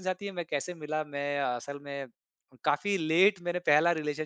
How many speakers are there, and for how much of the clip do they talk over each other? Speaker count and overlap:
1, no overlap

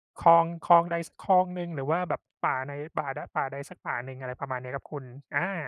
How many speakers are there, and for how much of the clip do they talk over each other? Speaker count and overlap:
1, no overlap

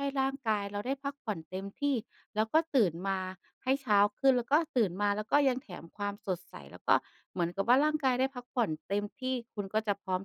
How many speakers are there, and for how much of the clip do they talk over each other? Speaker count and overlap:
1, no overlap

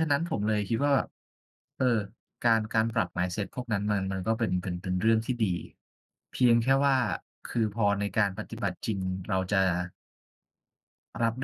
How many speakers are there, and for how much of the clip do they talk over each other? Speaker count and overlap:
1, no overlap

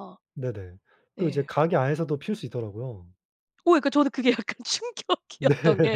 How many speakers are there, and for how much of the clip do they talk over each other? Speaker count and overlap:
2, about 8%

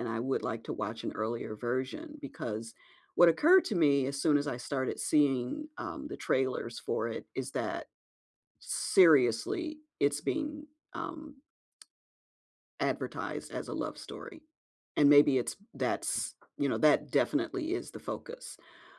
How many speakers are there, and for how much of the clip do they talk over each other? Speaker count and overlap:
1, no overlap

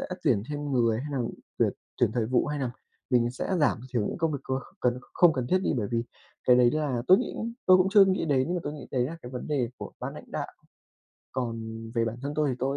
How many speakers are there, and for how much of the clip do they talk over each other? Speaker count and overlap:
1, no overlap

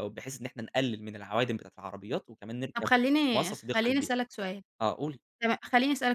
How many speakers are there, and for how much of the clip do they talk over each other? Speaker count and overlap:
2, about 15%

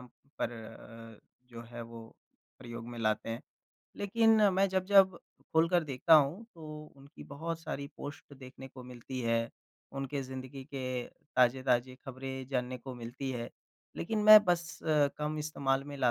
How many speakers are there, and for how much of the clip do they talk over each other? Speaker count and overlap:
1, no overlap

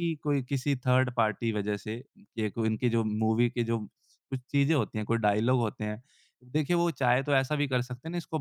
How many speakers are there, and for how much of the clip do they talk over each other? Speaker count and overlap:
1, no overlap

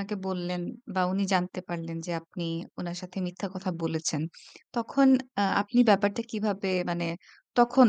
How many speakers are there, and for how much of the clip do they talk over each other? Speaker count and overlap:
1, no overlap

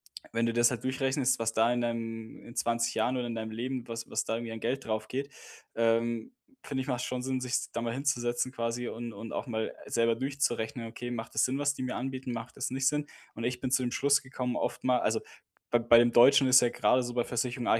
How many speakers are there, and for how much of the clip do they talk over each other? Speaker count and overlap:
1, no overlap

